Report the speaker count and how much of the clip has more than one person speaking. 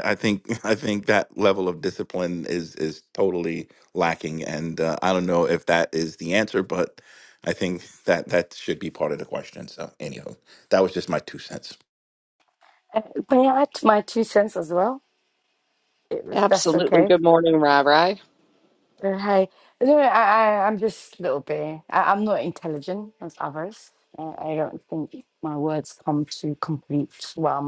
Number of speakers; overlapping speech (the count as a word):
three, about 3%